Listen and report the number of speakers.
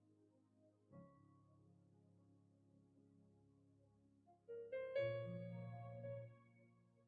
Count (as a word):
zero